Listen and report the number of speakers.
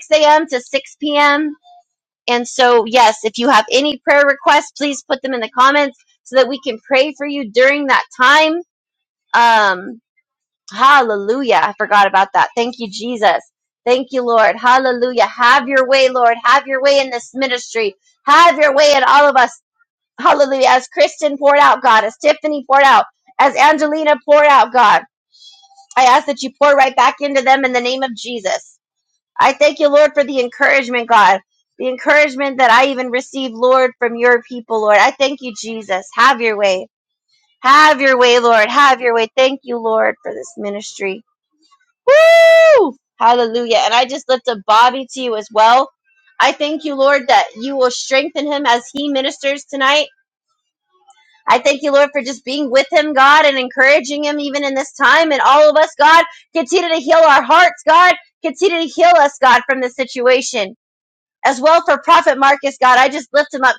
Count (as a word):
one